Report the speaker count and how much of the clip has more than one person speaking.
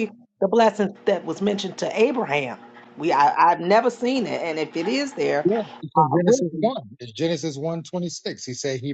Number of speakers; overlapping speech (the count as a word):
two, about 6%